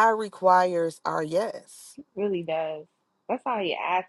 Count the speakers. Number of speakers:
two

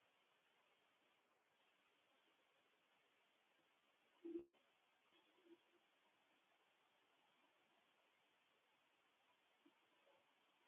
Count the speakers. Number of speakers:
zero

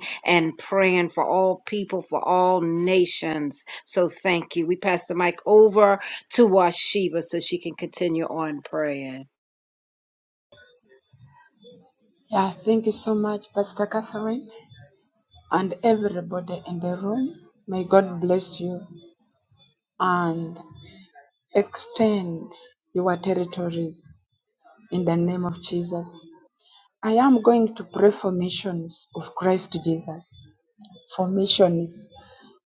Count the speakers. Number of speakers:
two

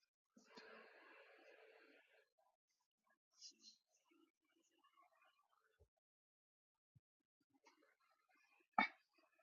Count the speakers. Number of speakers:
zero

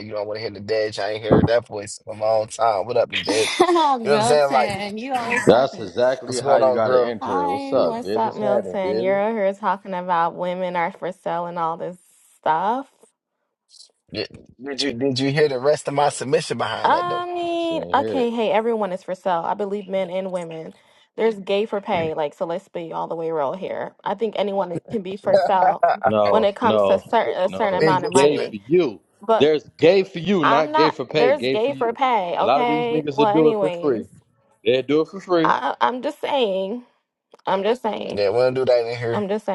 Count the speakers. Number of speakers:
three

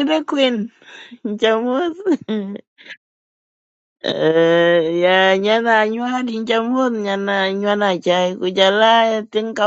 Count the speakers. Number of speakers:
one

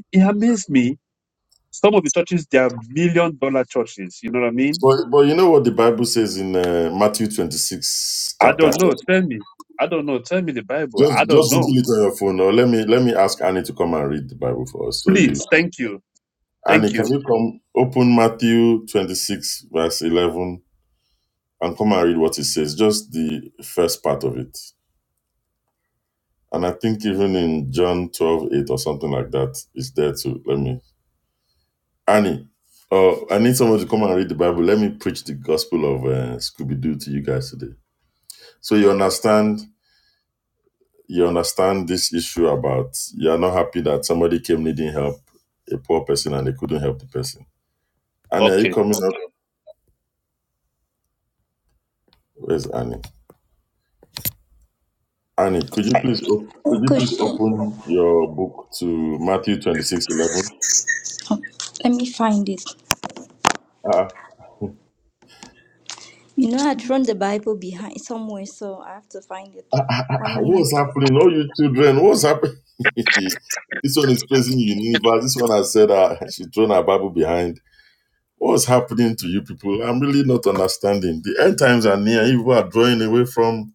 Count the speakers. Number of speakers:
three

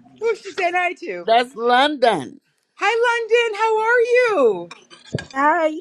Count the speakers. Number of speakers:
two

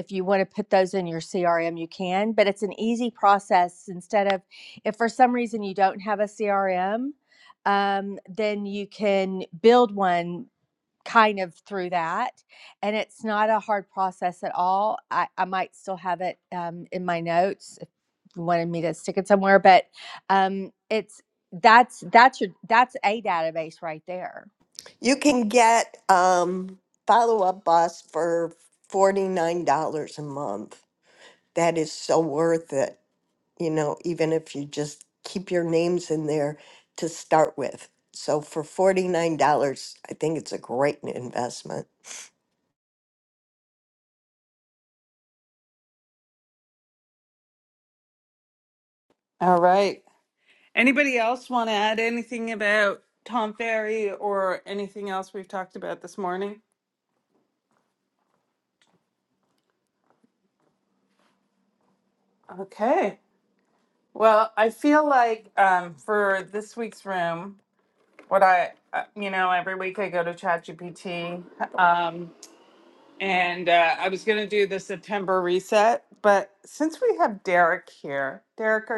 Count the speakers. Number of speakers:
three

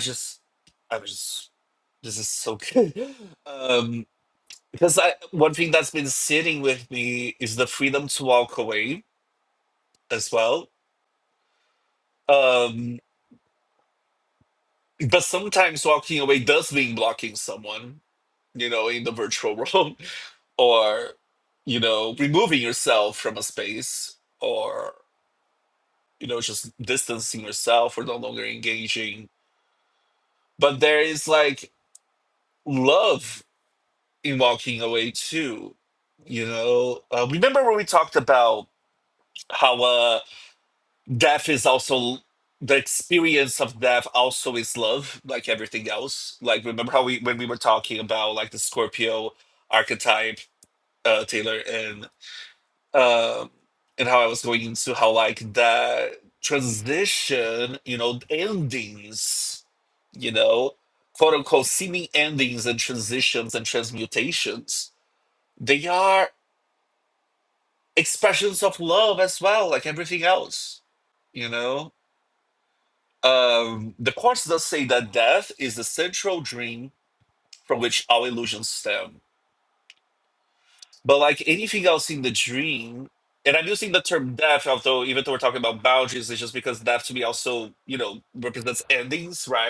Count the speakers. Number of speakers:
one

